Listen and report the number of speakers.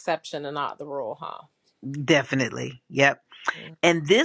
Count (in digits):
2